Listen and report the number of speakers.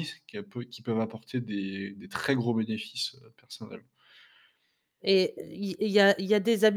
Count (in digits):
2